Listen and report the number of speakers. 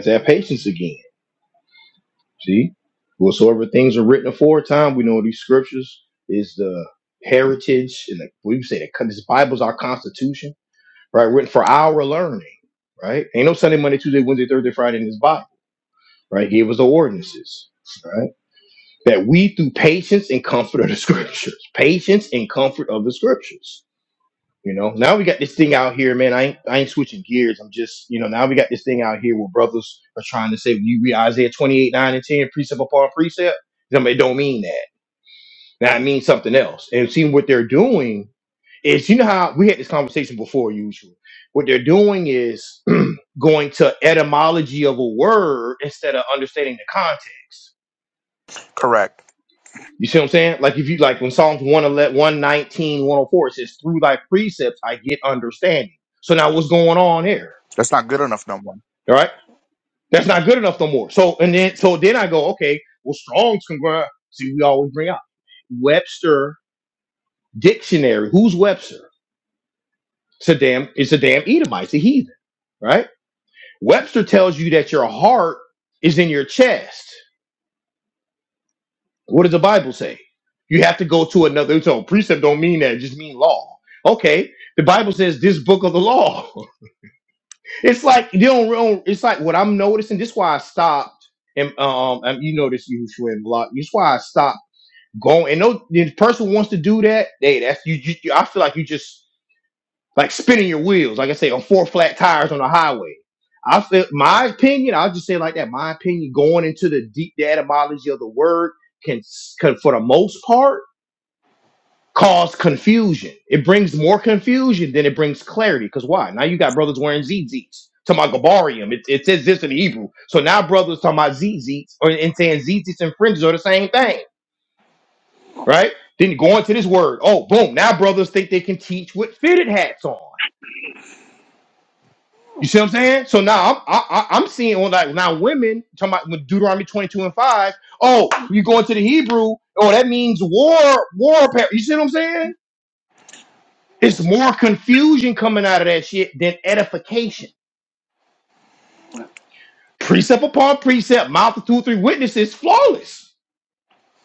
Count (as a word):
two